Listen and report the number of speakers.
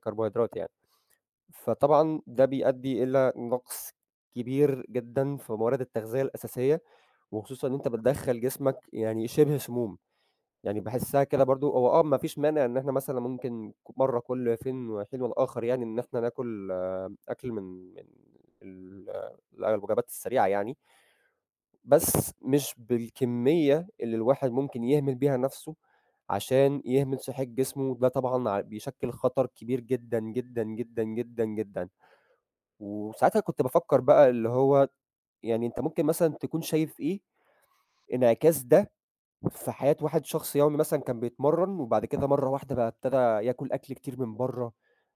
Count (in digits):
1